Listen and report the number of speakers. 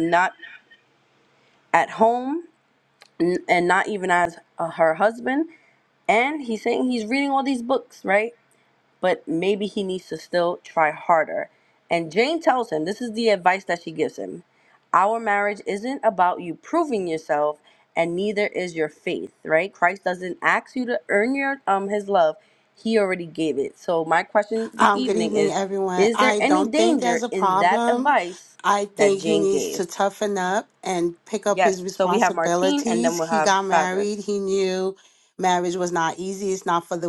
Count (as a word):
two